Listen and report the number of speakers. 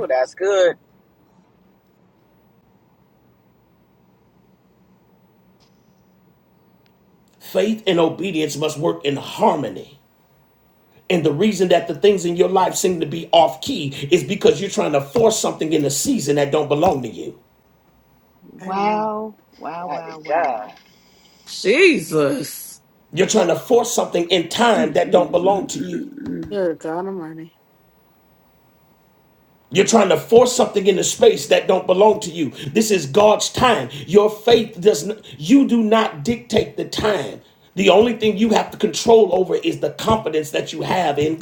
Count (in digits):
5